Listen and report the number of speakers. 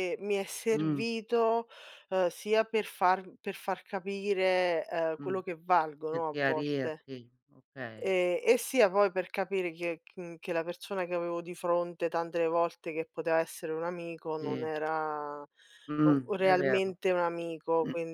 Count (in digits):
2